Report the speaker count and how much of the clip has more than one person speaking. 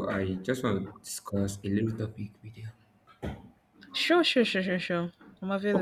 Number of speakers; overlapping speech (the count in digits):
2, about 2%